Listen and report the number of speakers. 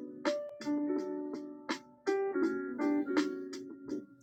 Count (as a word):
zero